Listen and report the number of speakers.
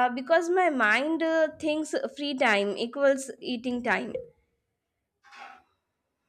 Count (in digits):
1